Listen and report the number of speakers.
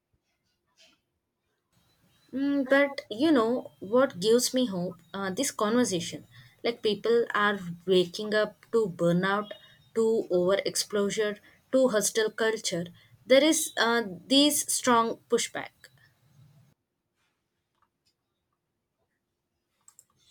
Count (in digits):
1